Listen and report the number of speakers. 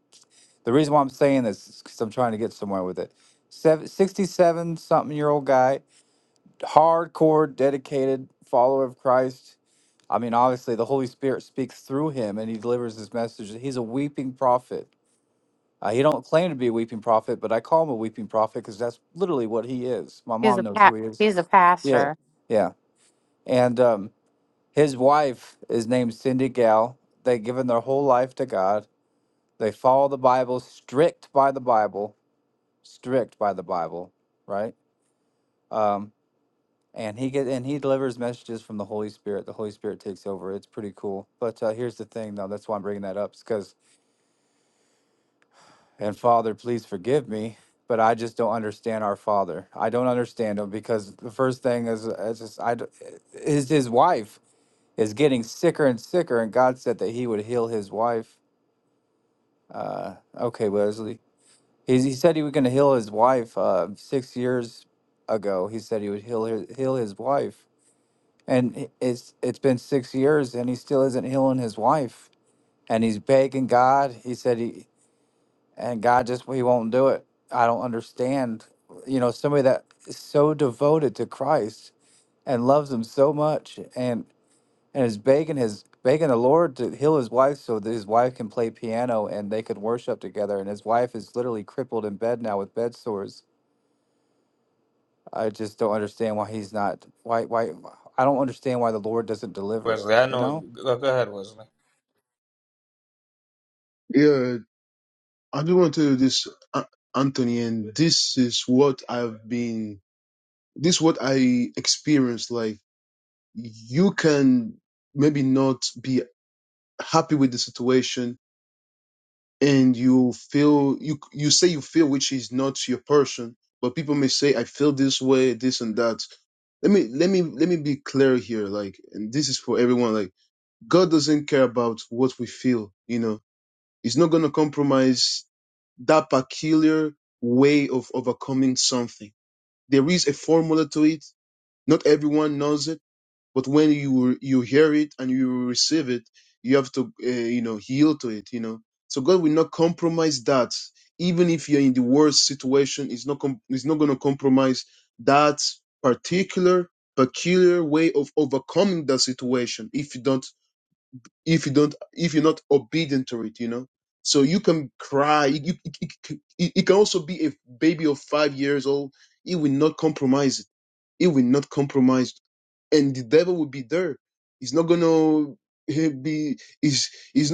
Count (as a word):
four